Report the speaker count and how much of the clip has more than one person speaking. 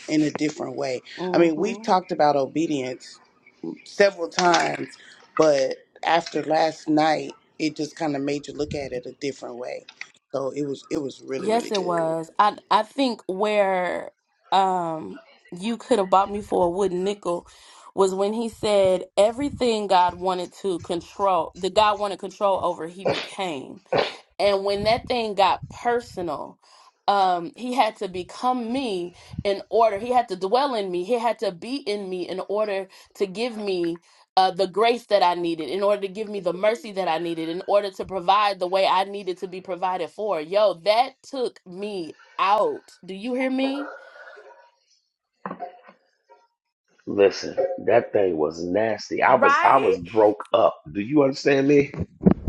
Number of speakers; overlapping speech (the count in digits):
3, about 4%